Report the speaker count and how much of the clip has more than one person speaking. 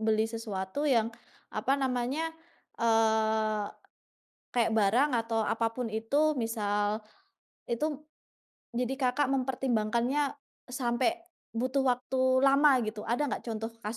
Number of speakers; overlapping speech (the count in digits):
1, no overlap